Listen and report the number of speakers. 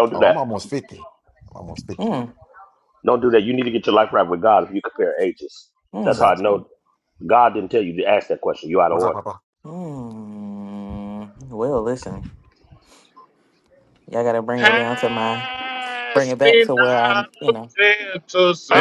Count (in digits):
4